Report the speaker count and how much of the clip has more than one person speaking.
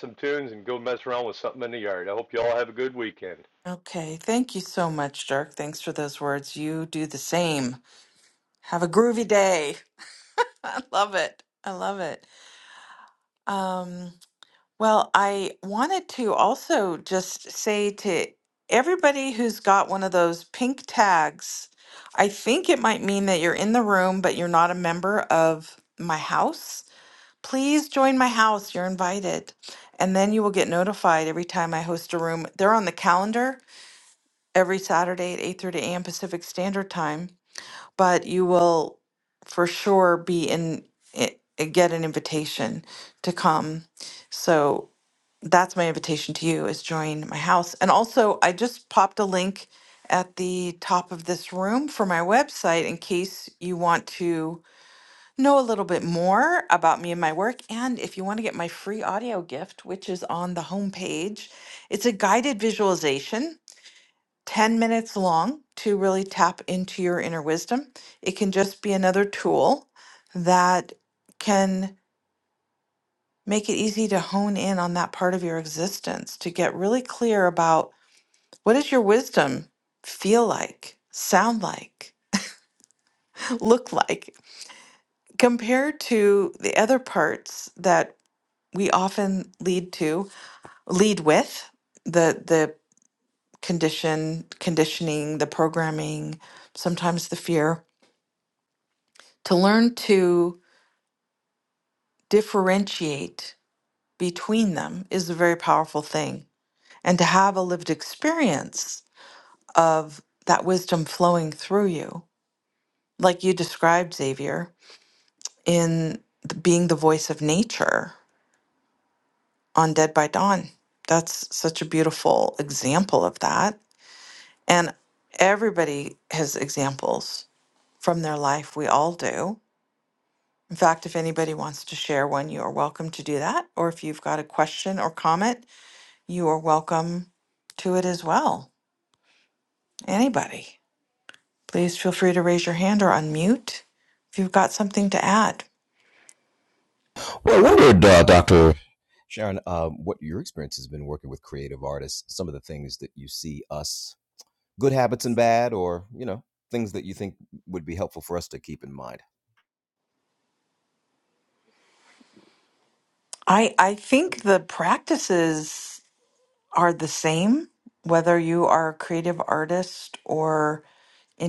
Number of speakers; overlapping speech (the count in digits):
3, no overlap